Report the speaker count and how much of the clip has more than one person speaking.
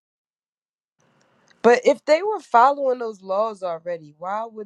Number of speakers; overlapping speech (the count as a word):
one, no overlap